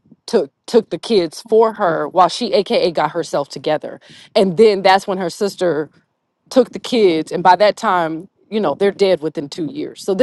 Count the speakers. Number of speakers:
1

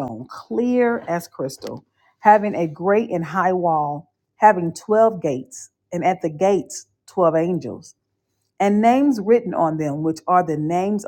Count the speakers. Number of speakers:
1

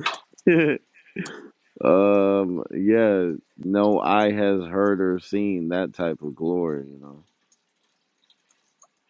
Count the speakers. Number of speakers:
1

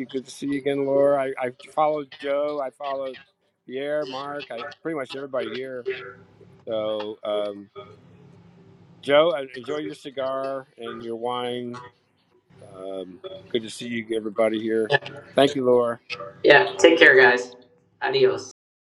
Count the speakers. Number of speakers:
2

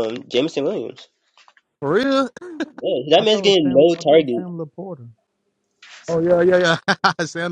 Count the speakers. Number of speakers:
3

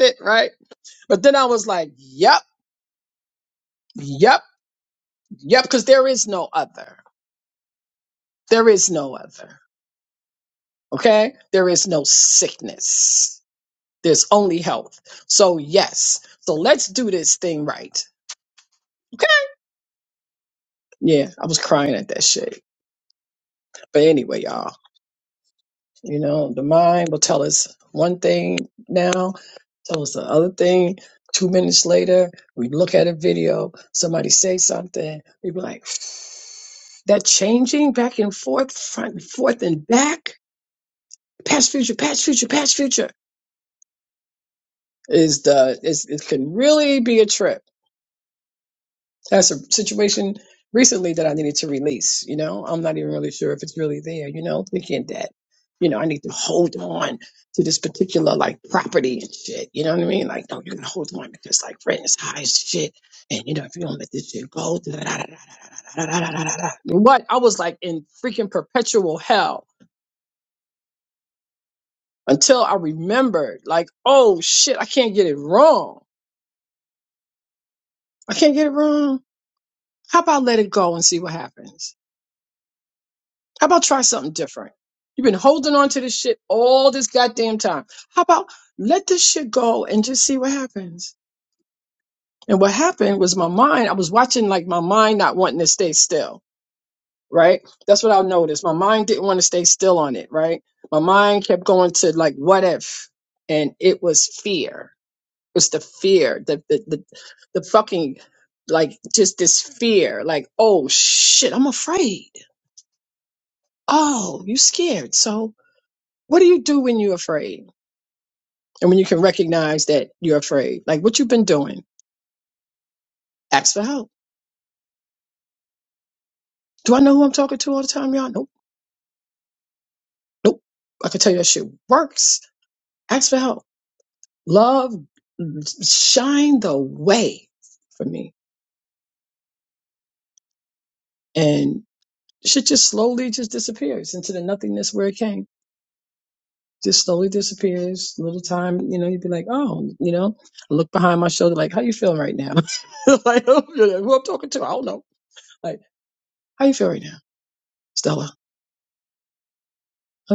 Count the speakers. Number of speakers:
1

